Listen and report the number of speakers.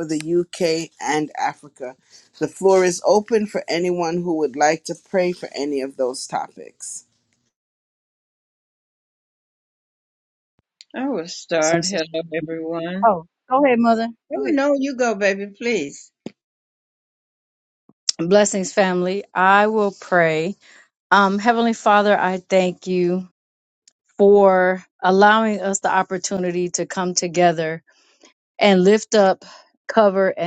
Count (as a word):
three